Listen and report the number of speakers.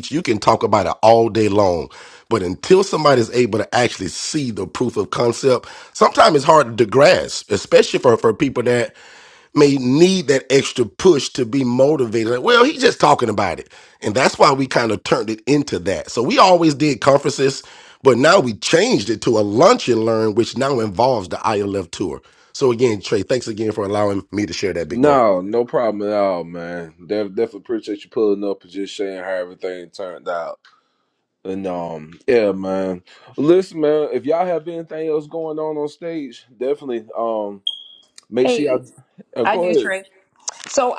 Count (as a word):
three